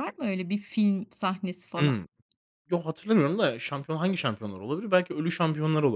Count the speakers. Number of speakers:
2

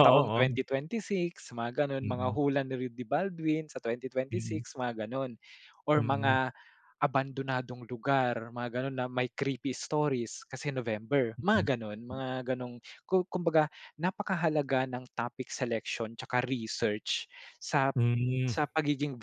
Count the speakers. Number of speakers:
2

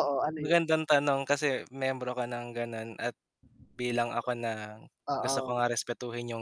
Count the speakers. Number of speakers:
2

